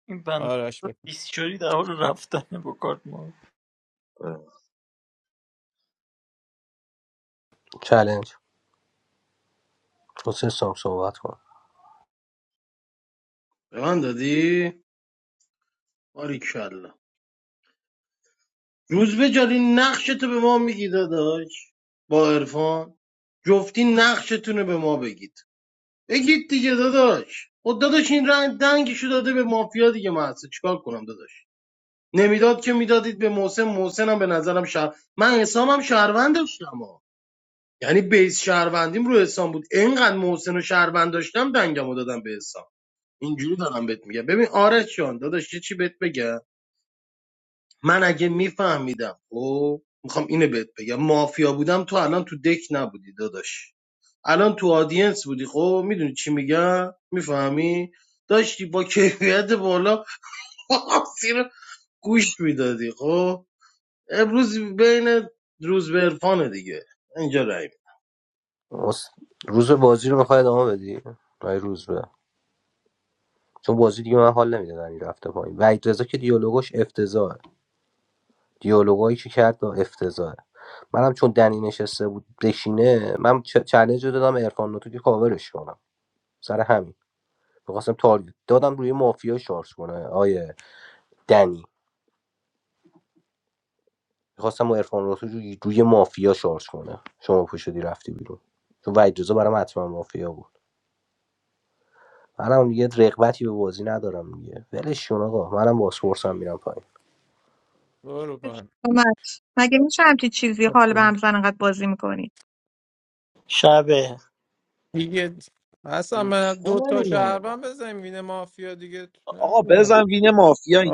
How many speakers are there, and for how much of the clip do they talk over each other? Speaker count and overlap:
6, about 2%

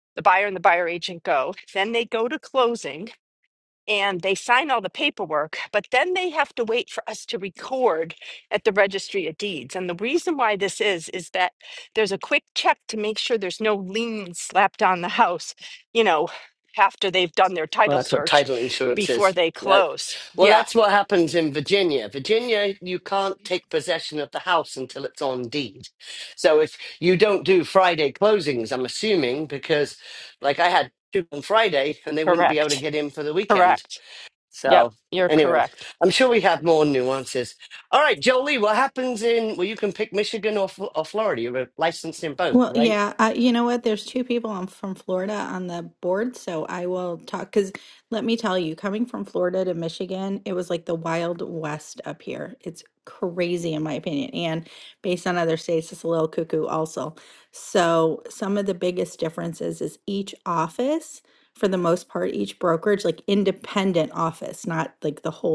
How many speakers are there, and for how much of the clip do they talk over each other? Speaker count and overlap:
3, about 5%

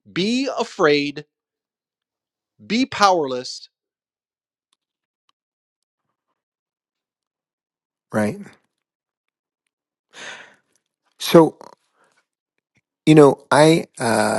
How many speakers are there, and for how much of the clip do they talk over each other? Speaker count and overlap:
2, no overlap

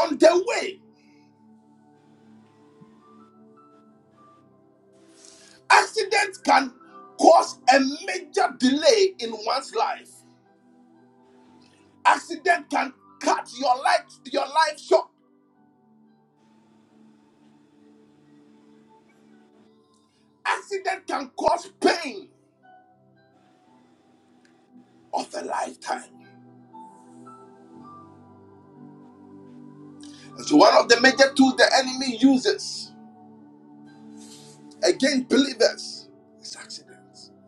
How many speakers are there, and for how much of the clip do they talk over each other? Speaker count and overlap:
1, no overlap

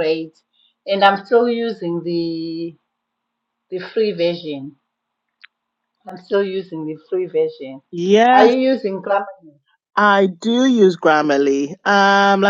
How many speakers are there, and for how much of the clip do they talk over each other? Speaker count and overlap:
2, about 1%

